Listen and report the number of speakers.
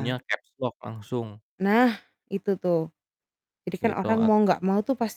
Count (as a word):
two